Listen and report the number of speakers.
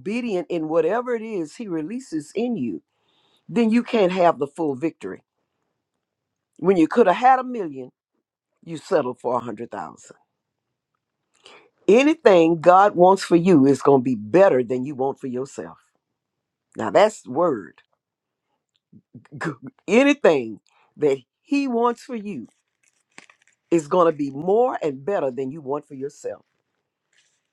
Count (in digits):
1